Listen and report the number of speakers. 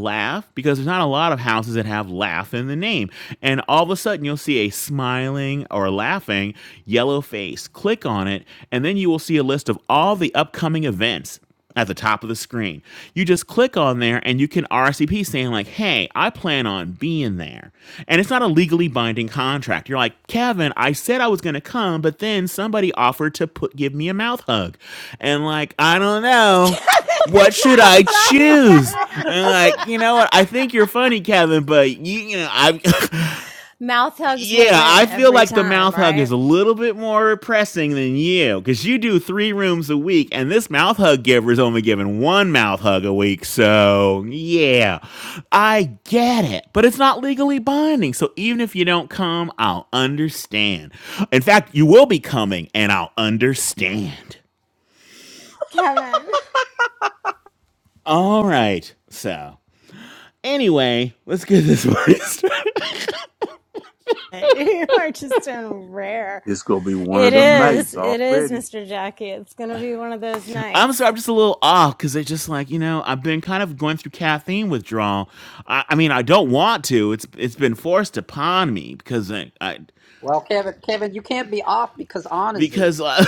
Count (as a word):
four